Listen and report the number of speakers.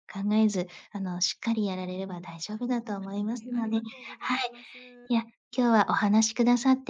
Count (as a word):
two